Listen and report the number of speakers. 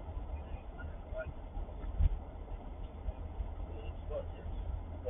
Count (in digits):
0